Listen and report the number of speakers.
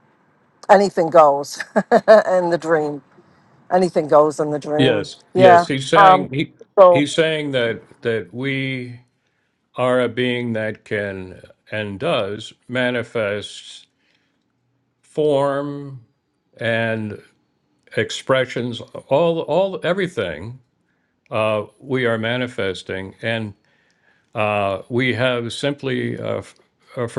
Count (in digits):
2